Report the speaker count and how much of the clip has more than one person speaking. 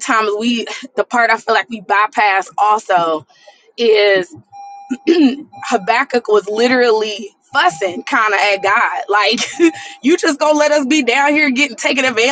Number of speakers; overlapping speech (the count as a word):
one, no overlap